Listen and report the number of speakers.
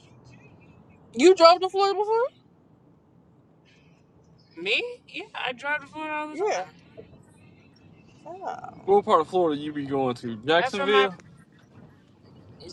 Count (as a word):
three